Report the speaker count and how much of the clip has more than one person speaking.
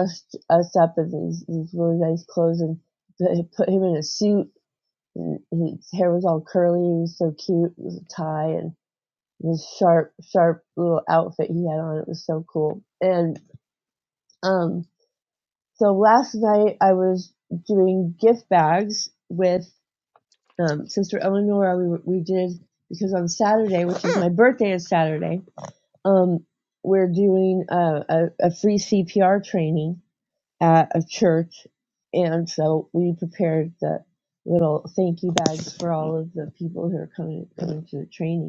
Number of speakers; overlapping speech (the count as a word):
one, no overlap